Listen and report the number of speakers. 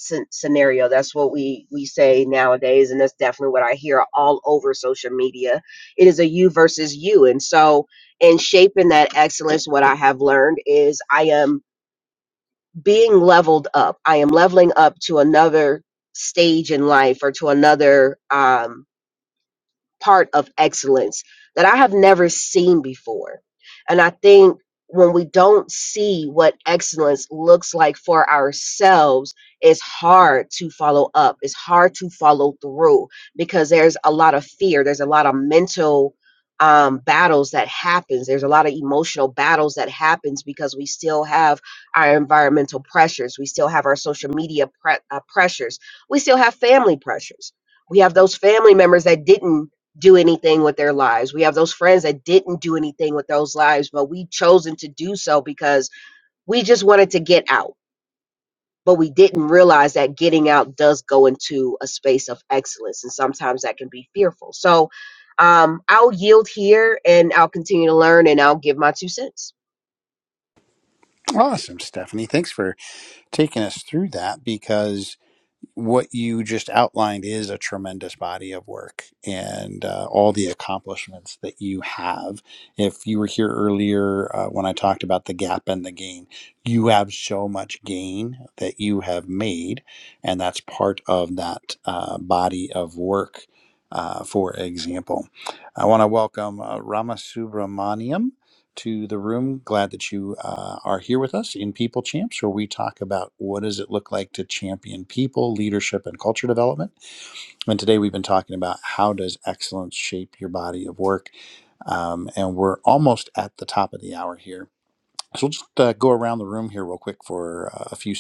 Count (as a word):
two